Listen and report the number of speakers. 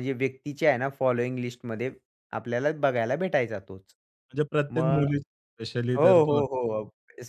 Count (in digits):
2